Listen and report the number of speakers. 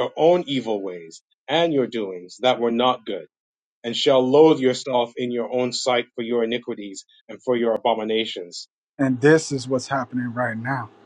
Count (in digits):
2